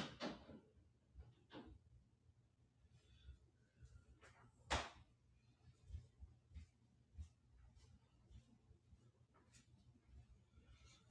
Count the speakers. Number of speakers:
zero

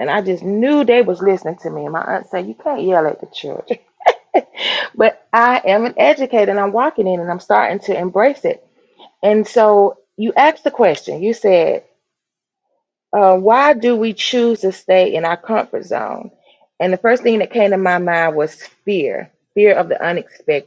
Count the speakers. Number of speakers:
one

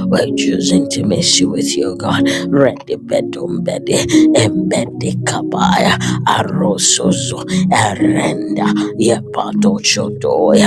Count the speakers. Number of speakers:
one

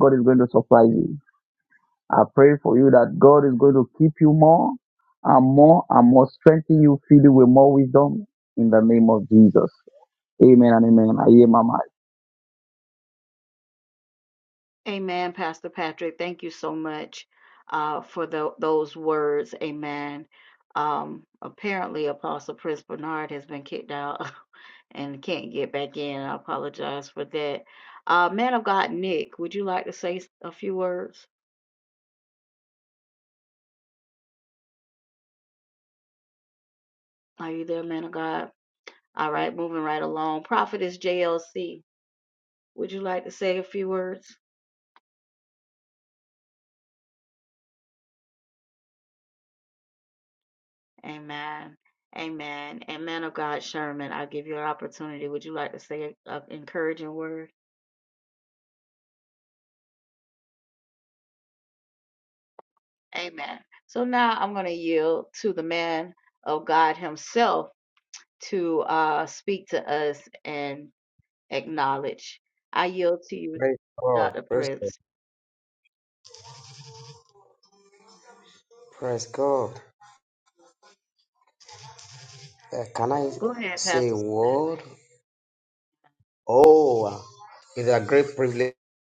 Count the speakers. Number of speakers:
three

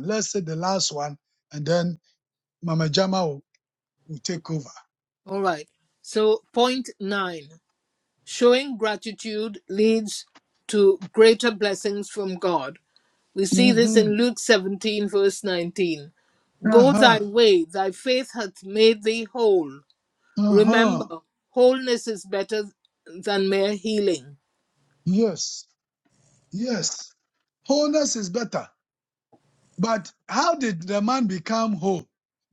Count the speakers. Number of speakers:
two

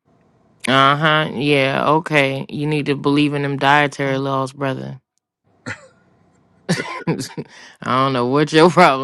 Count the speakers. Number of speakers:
one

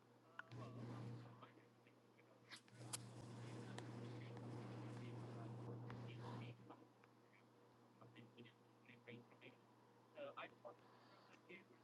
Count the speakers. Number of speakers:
zero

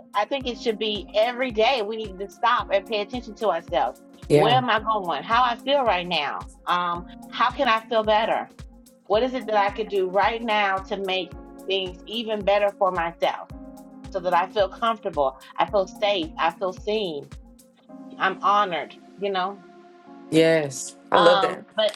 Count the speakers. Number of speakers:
two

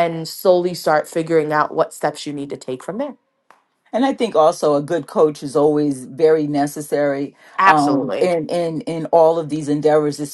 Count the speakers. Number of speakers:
two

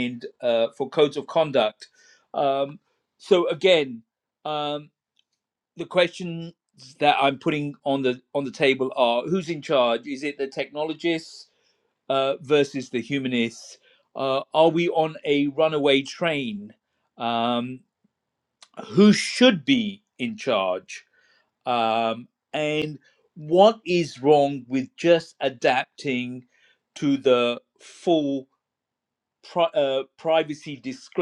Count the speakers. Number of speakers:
one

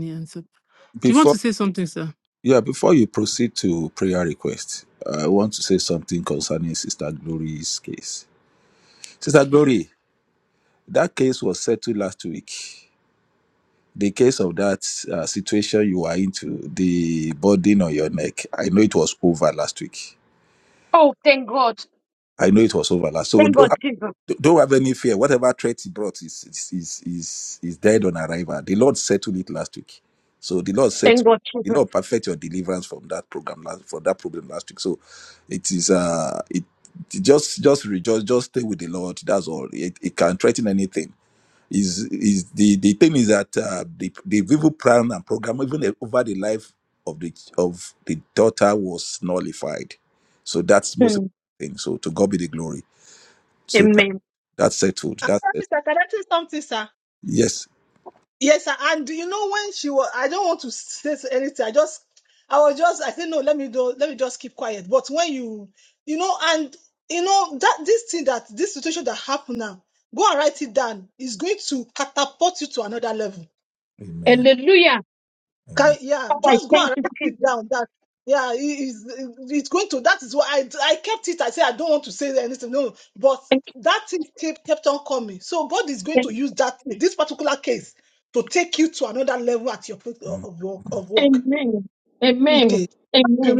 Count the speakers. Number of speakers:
four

